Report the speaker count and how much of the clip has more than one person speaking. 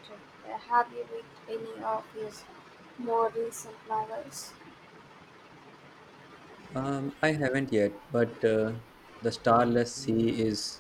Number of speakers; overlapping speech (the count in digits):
2, no overlap